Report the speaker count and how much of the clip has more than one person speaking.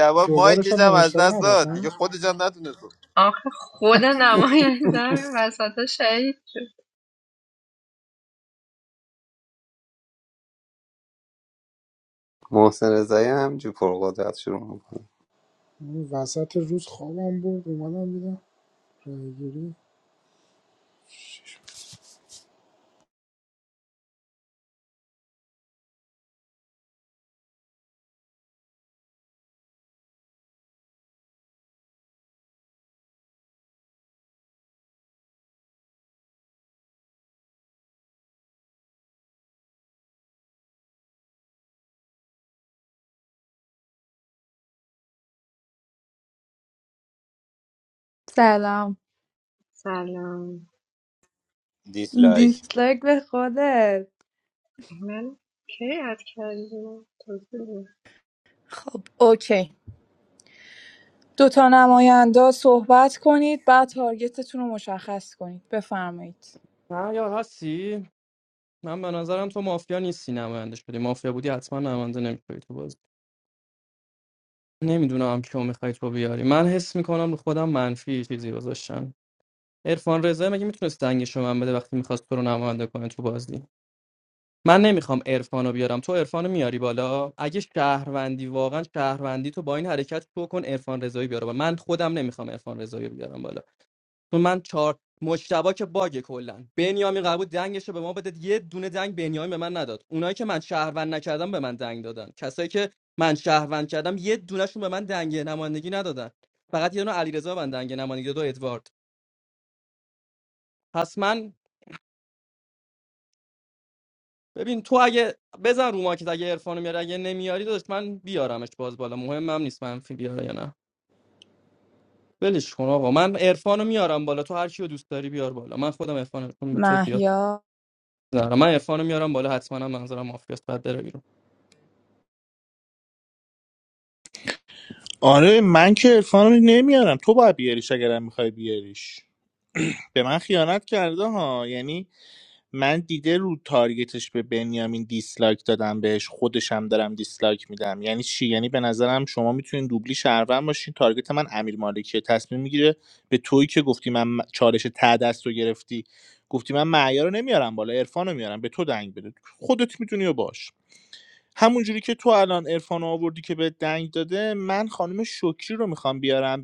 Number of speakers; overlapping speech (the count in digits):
8, about 1%